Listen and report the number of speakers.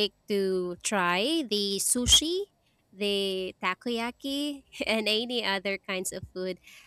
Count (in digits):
1